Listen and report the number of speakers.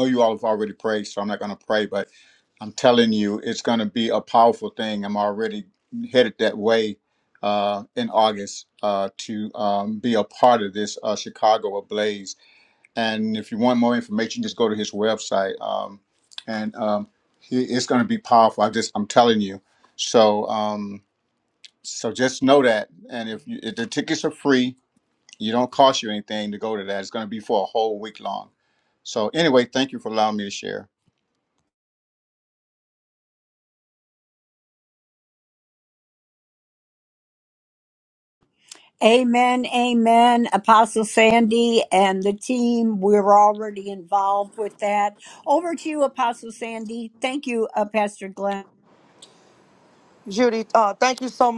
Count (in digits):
3